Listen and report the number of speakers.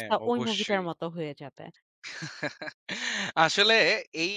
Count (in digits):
2